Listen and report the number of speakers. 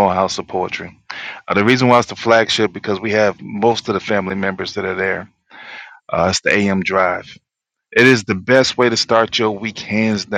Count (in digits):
1